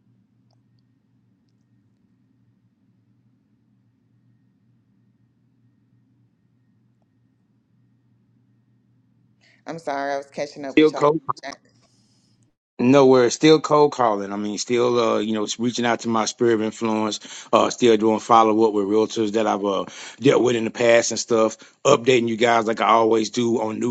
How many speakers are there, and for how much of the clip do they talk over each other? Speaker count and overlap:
two, about 1%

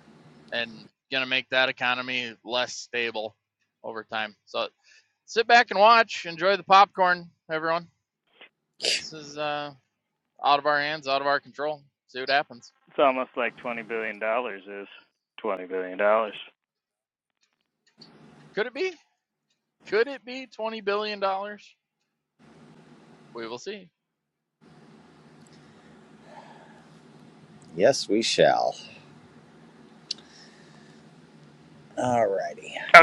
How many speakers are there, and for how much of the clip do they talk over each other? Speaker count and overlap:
three, no overlap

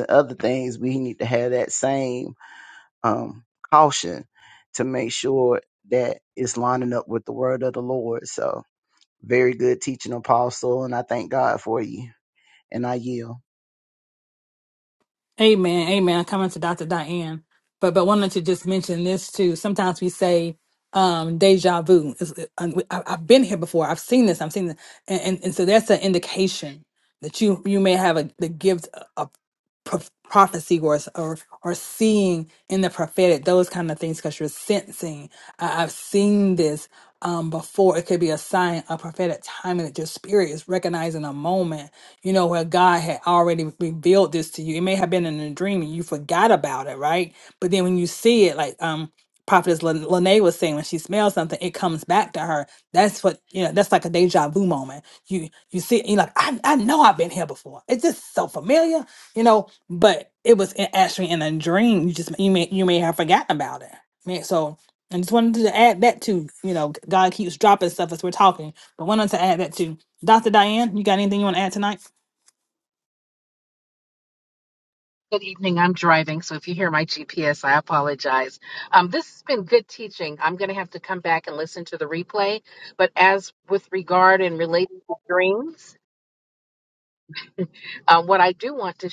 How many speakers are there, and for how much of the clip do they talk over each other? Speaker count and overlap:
three, no overlap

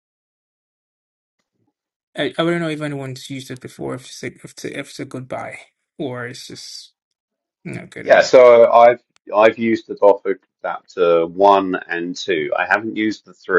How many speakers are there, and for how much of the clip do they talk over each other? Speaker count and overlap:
two, about 2%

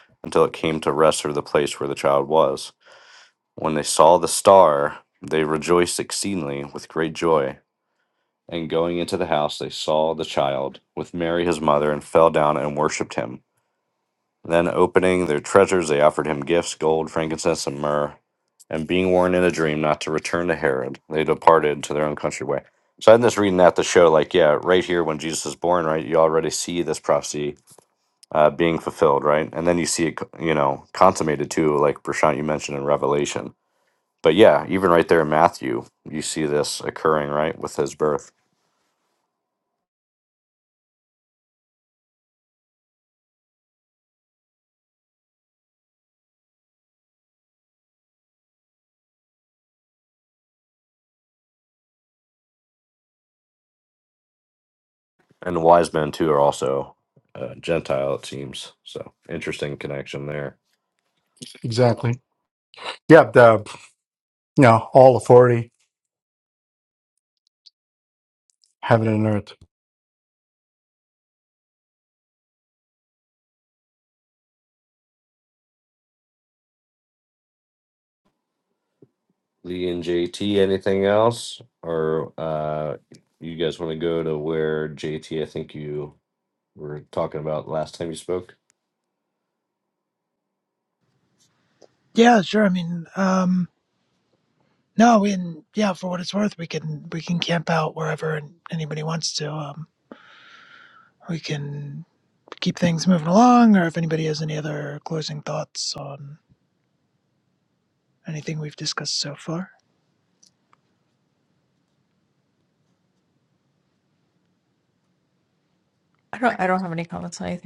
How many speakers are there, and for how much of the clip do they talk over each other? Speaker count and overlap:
four, no overlap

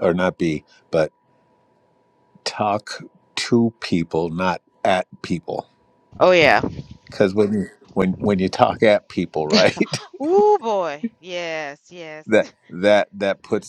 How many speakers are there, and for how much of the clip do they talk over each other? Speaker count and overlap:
two, no overlap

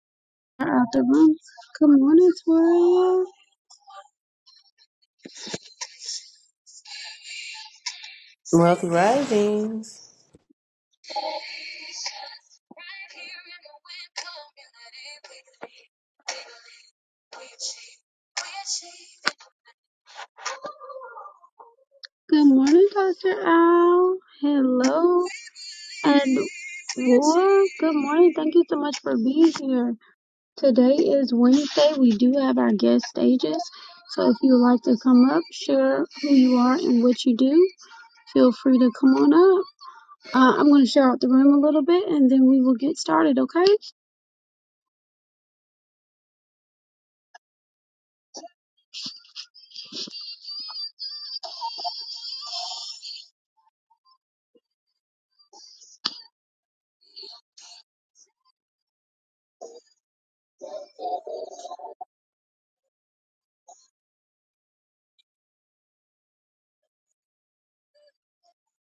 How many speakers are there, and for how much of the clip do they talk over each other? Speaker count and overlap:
two, no overlap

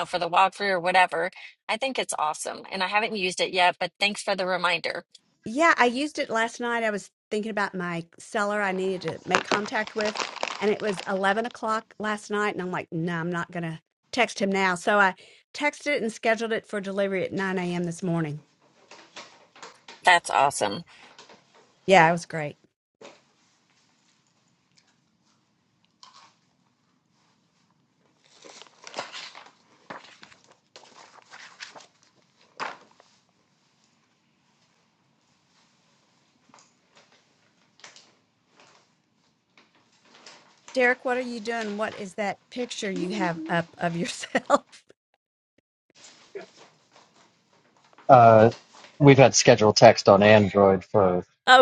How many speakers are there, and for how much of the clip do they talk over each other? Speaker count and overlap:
three, no overlap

